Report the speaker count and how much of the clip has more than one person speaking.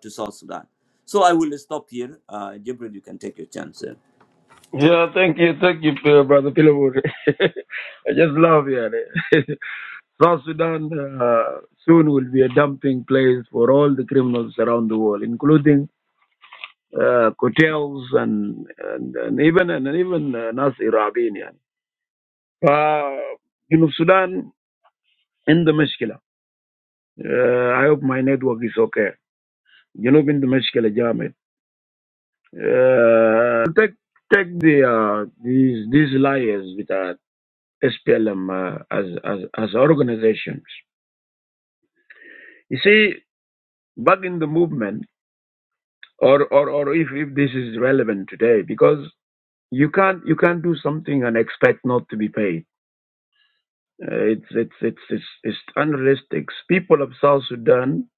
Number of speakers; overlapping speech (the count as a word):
two, no overlap